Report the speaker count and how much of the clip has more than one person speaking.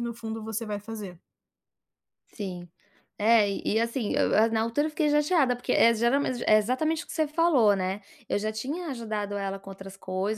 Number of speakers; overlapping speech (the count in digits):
2, no overlap